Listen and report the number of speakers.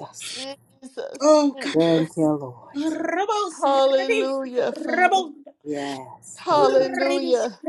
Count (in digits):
3